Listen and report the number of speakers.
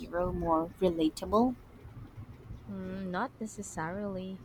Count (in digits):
2